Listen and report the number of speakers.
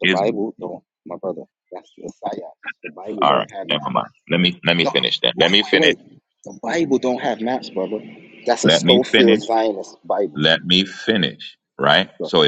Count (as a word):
two